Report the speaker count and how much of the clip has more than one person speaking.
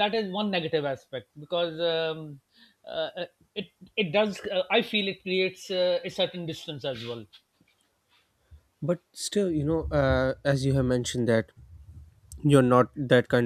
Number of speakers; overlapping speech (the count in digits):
2, no overlap